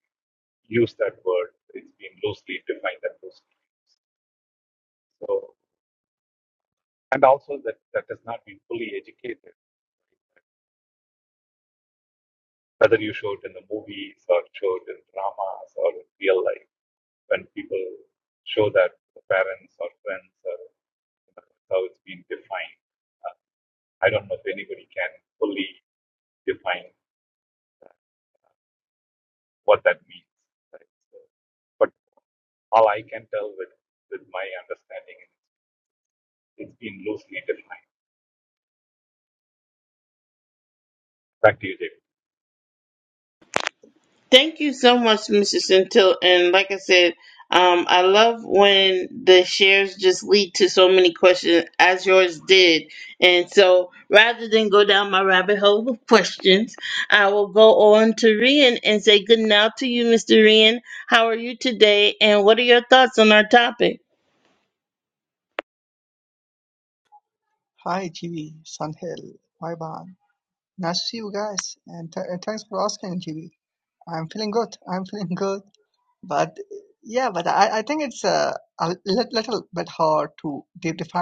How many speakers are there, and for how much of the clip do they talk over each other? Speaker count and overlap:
3, no overlap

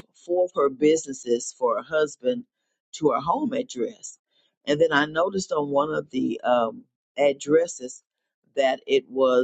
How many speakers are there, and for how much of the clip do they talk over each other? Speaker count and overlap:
1, no overlap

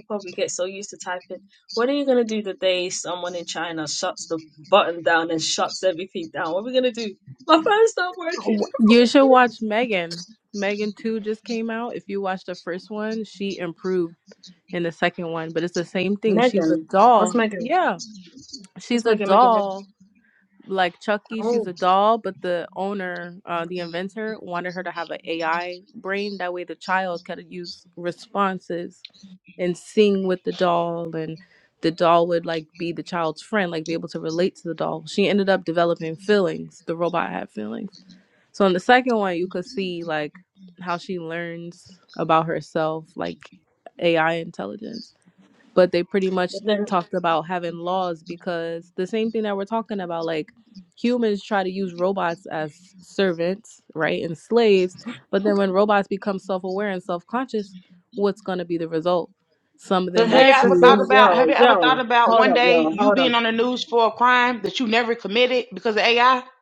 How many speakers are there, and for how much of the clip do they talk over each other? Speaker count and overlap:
3, about 8%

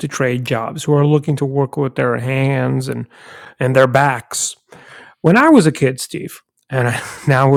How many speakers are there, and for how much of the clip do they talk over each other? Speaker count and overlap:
1, no overlap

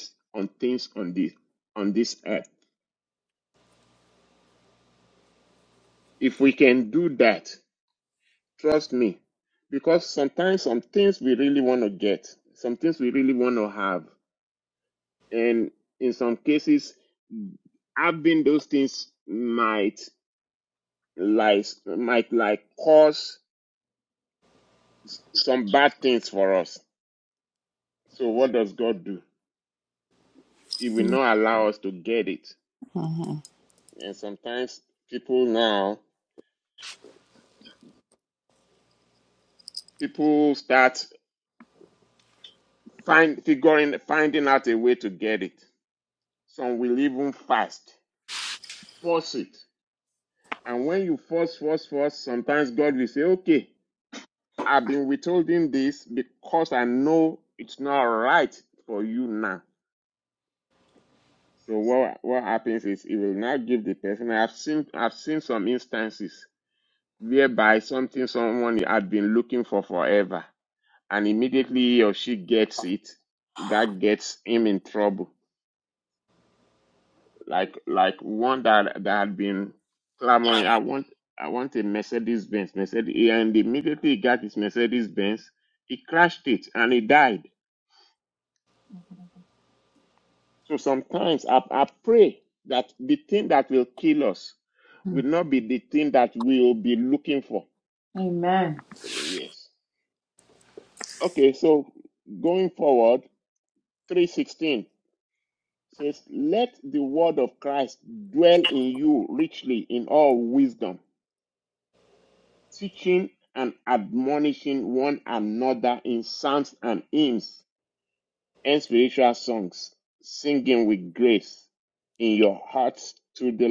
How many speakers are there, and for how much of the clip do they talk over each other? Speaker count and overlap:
2, no overlap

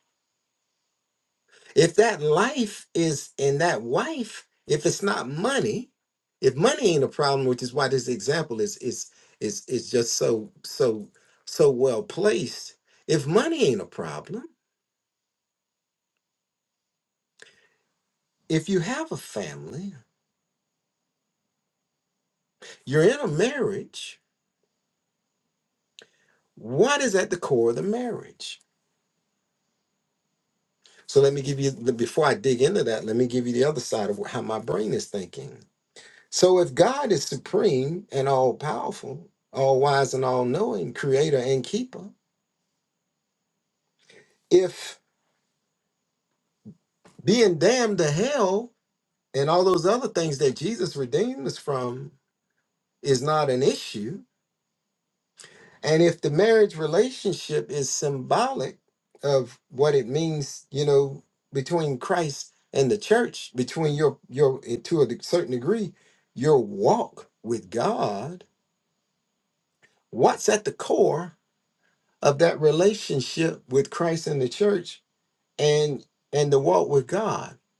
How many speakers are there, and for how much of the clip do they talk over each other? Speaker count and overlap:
1, no overlap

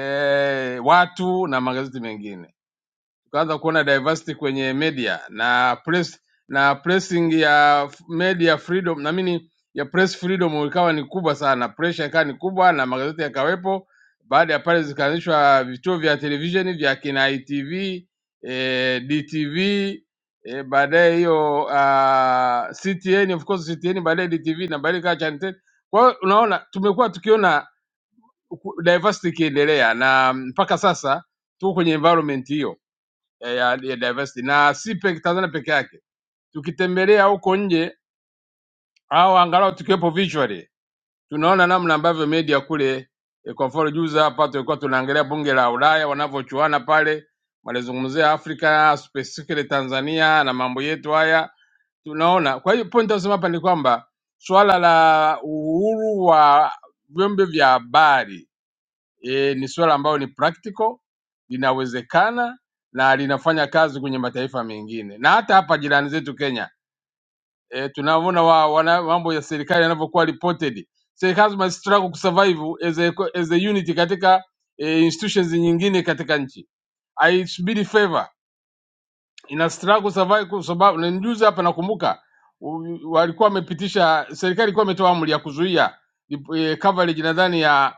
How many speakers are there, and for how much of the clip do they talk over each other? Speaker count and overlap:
1, no overlap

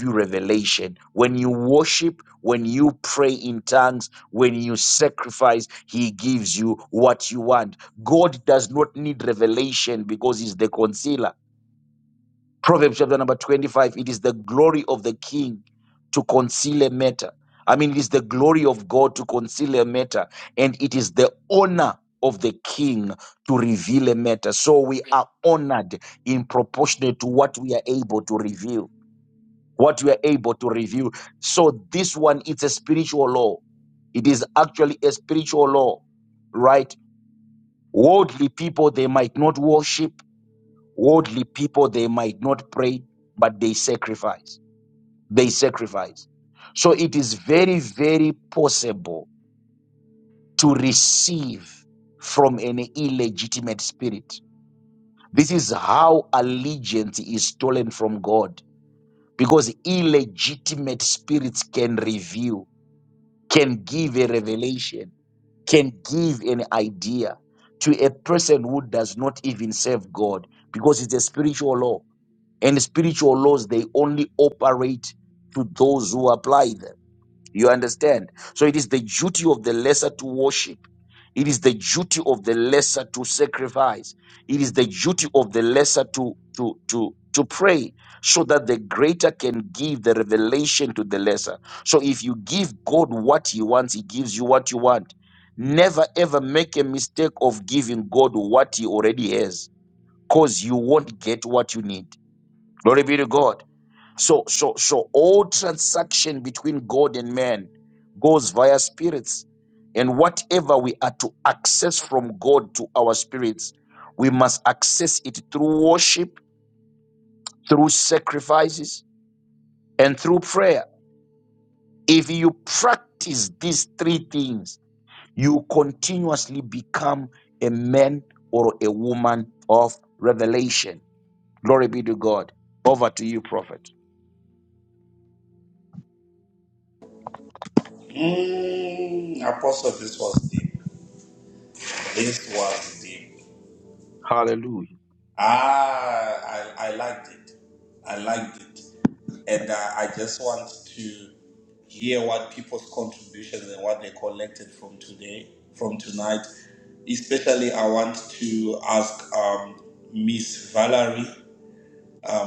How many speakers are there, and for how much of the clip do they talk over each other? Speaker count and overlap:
2, no overlap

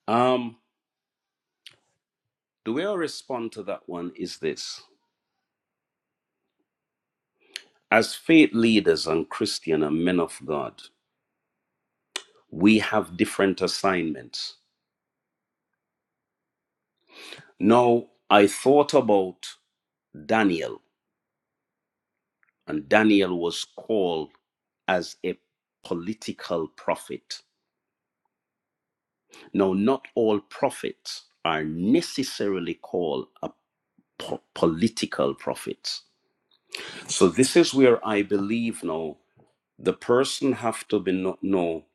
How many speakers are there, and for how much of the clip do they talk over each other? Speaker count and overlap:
1, no overlap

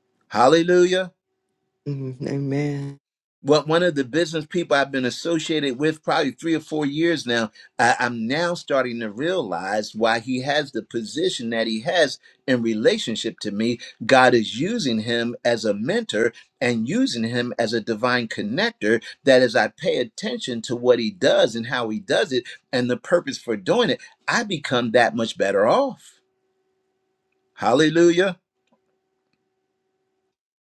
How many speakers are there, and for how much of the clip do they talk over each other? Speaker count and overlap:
2, no overlap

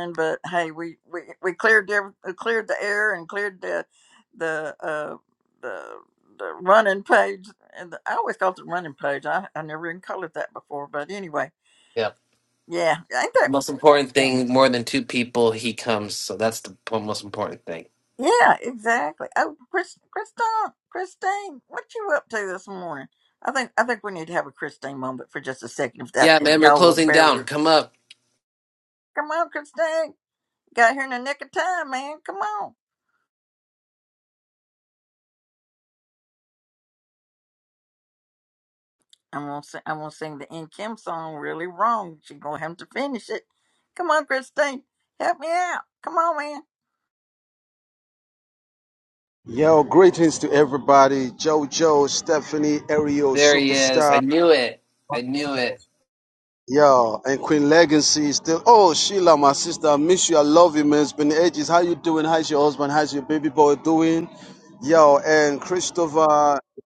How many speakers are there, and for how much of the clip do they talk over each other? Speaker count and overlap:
3, about 4%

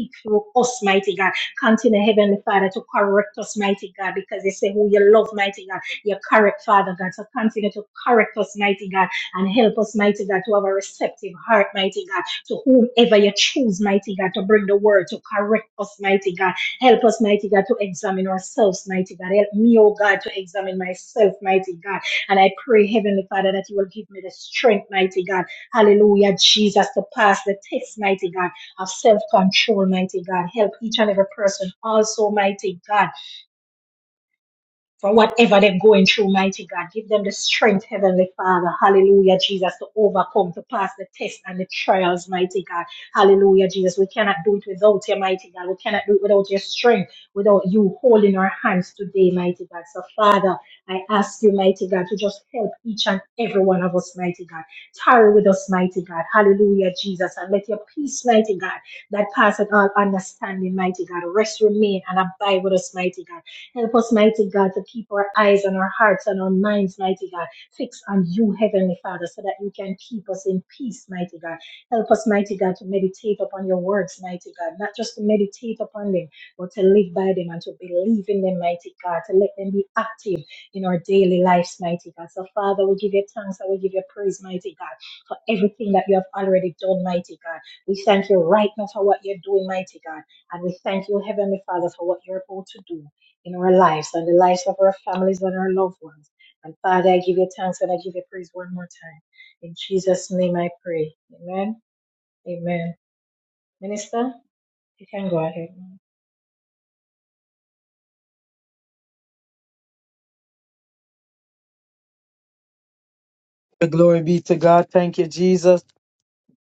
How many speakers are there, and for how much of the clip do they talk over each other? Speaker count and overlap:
2, no overlap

